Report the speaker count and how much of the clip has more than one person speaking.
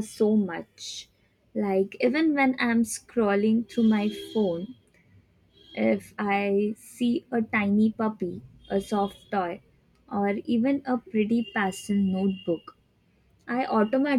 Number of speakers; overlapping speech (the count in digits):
1, no overlap